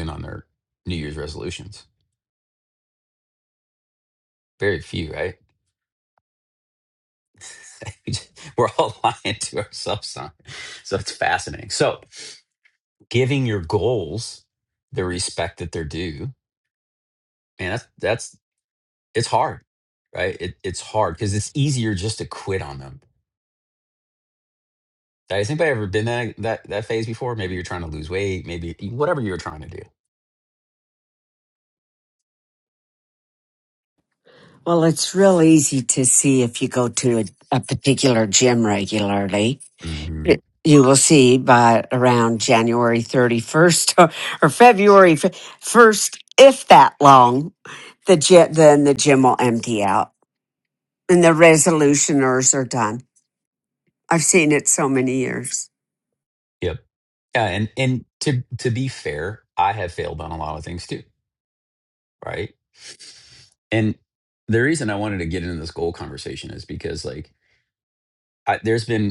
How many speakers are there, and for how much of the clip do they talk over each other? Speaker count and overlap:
2, under 1%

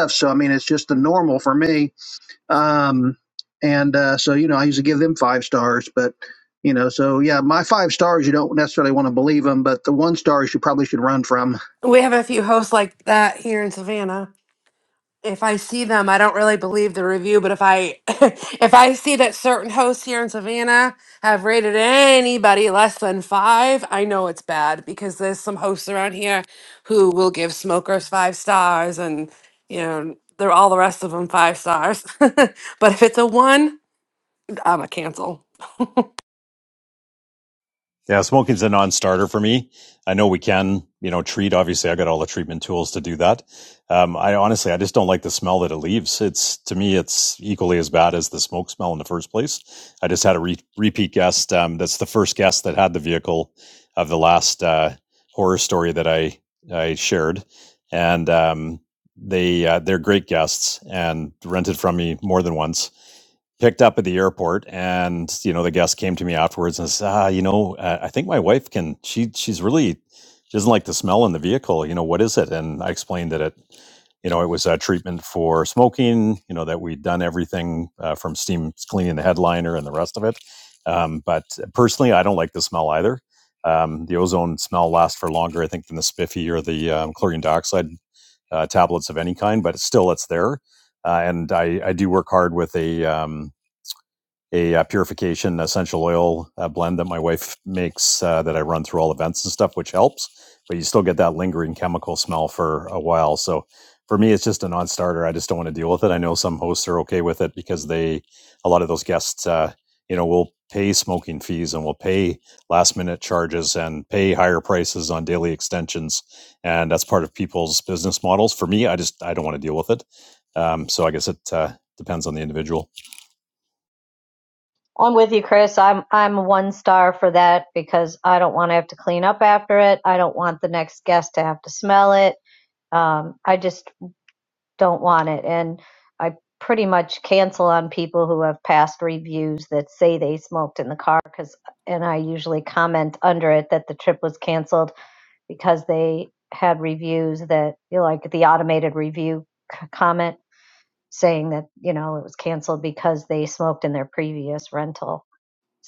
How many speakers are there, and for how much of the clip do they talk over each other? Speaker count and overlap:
4, no overlap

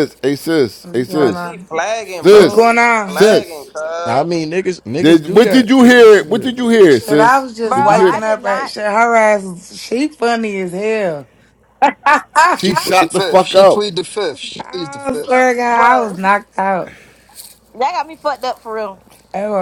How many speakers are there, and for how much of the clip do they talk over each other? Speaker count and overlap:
6, about 37%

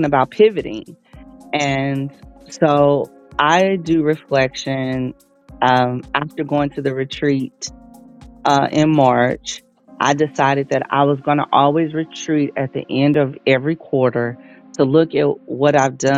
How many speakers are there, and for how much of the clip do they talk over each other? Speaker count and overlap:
1, no overlap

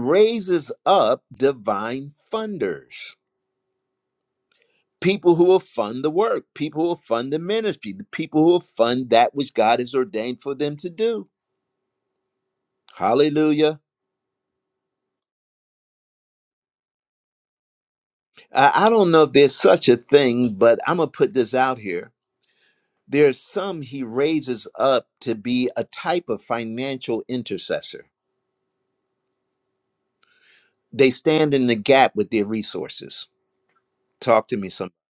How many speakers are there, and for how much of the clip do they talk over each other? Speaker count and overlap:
1, no overlap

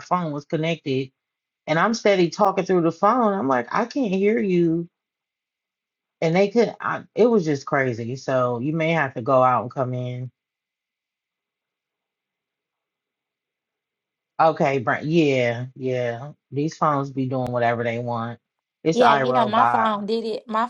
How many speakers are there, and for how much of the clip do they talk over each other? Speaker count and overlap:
2, about 5%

